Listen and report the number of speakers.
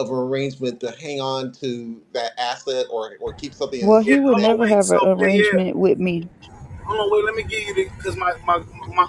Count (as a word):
three